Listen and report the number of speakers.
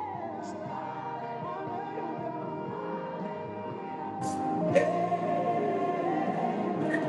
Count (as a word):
zero